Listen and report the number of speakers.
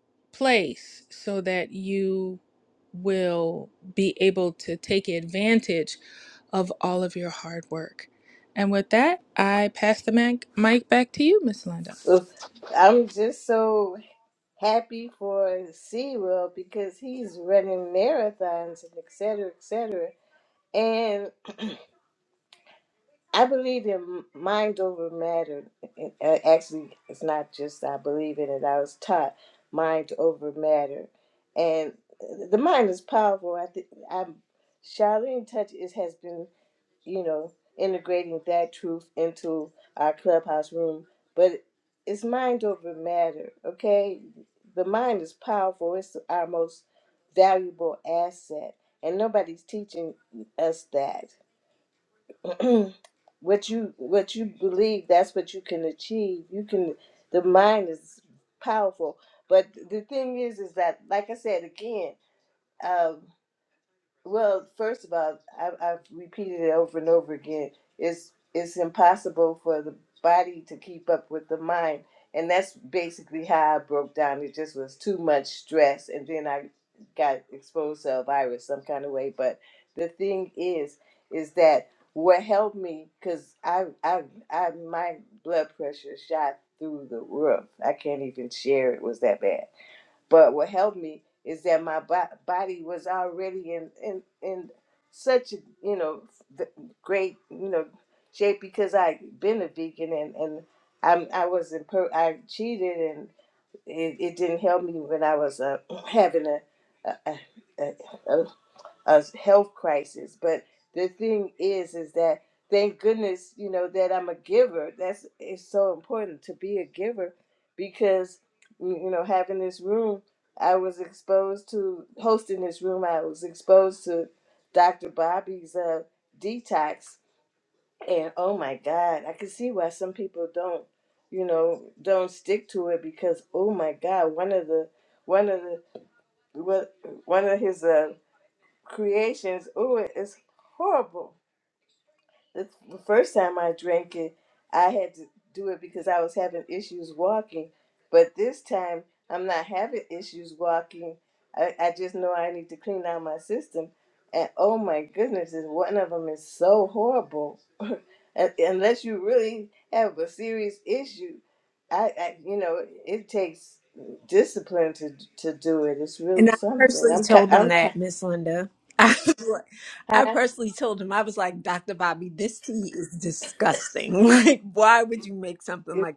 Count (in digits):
3